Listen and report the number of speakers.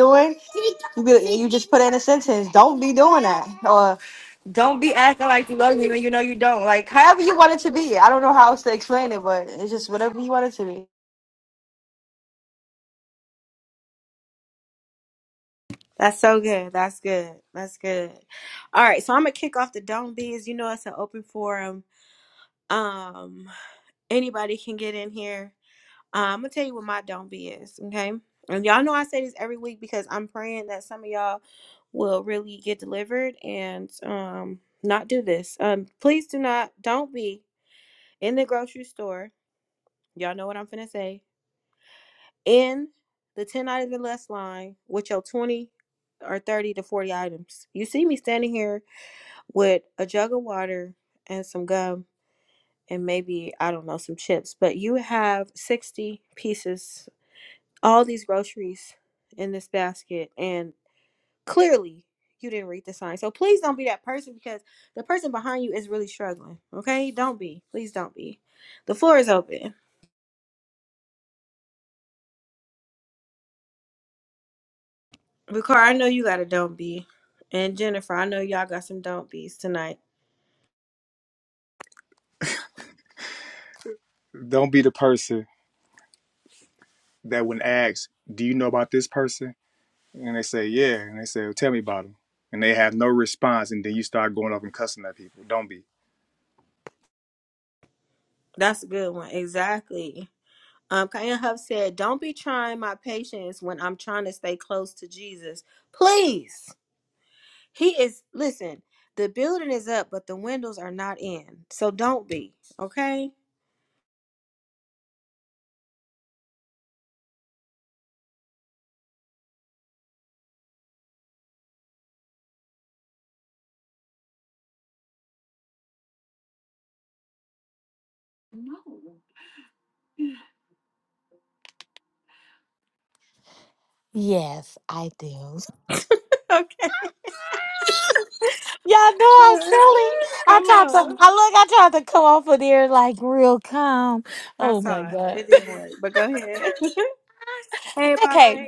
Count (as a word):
four